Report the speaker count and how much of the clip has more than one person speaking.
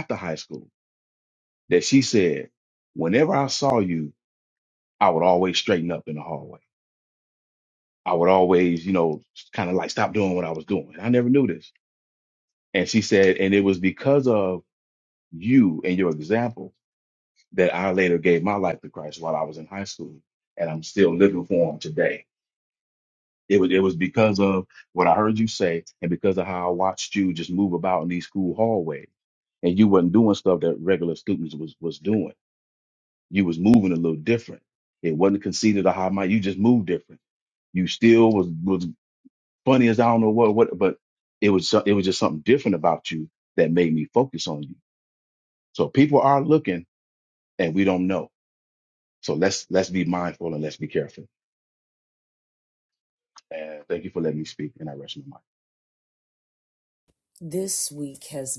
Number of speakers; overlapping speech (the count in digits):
2, no overlap